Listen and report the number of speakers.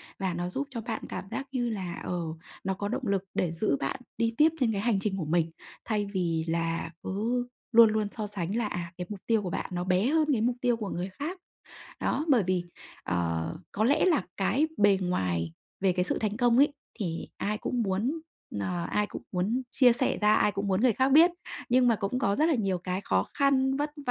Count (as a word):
one